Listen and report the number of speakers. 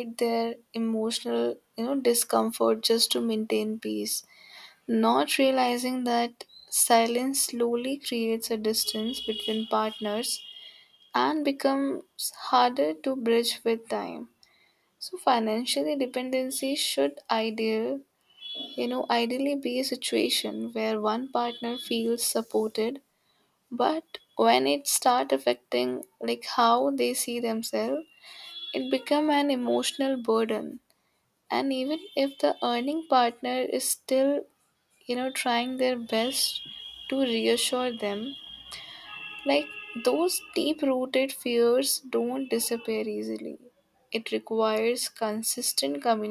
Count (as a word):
one